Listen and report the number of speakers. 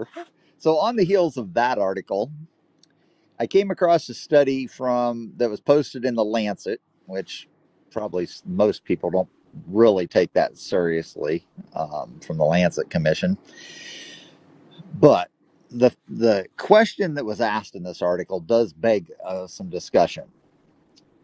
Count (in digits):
1